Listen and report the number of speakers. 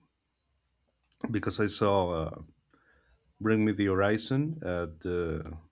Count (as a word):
one